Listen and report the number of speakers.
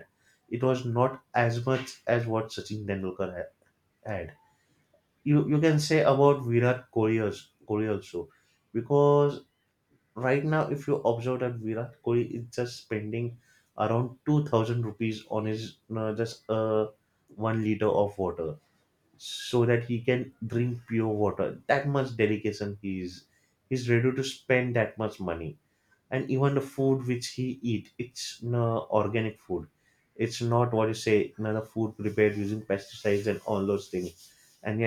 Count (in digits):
1